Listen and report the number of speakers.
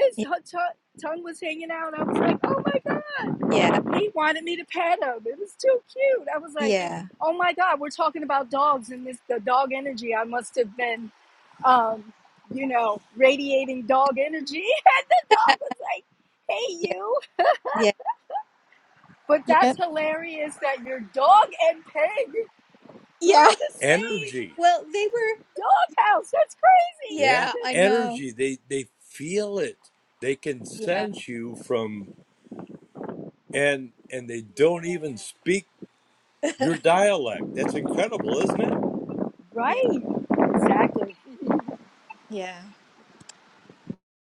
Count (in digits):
3